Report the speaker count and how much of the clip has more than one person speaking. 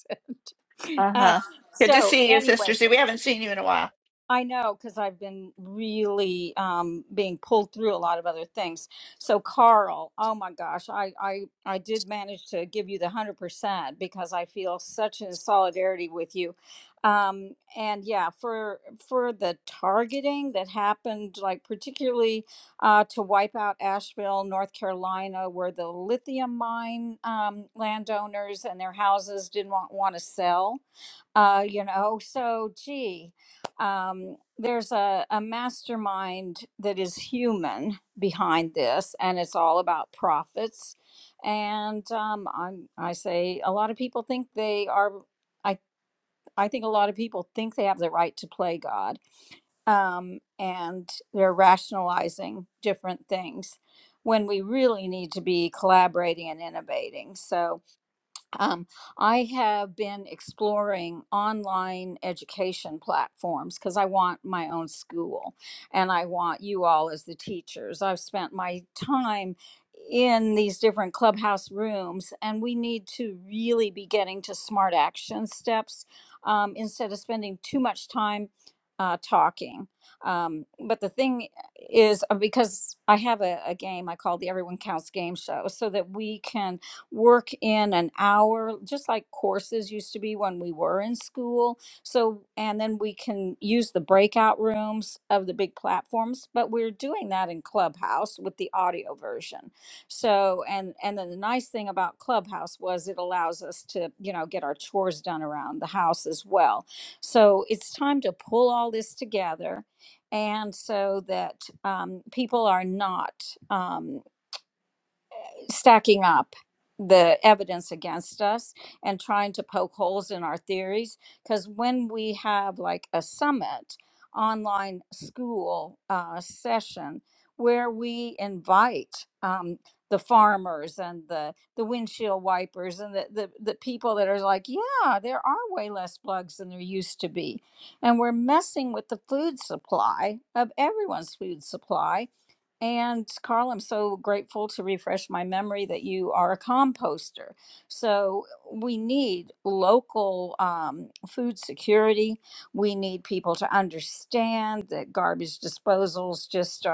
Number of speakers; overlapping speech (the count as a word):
two, about 1%